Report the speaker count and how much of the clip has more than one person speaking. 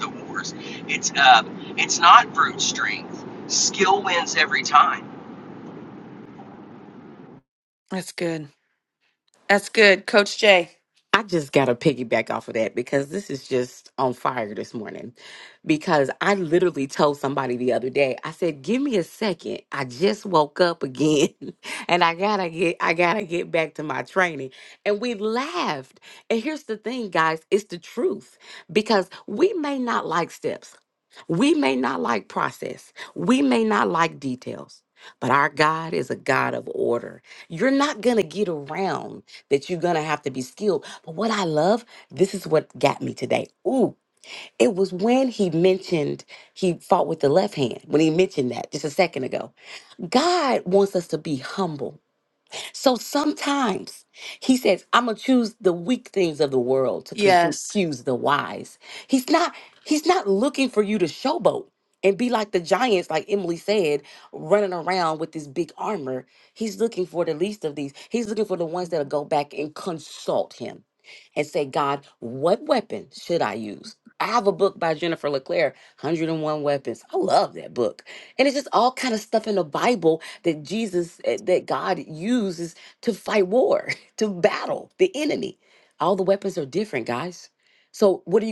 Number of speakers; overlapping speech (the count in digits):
3, under 1%